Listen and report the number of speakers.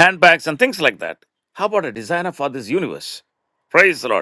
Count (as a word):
one